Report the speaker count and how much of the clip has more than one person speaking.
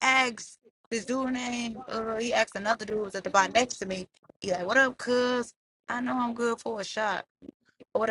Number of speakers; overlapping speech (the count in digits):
1, no overlap